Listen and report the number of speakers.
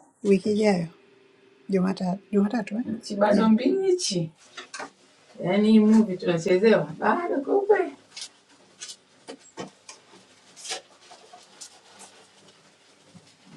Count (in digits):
2